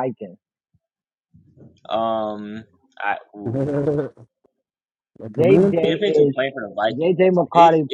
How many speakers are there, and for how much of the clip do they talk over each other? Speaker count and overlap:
3, about 19%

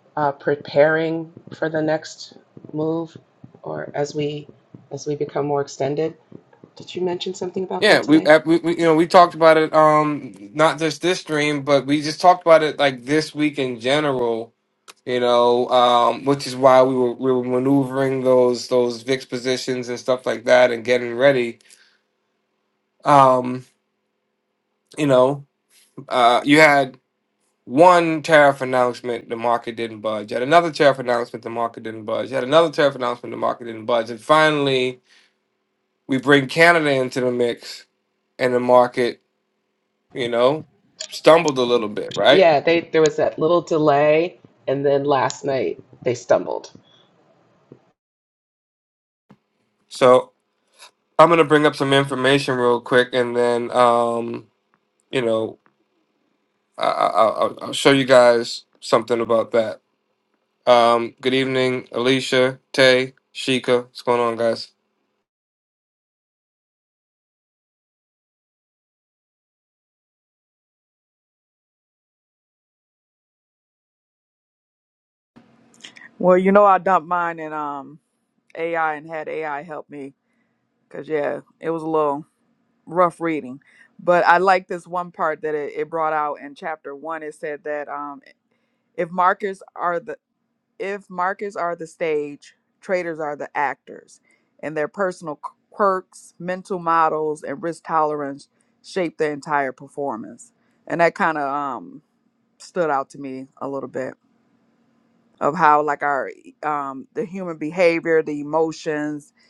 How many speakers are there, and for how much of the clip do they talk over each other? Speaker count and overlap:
3, about 1%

